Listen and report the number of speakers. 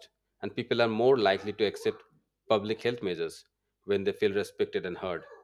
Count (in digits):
1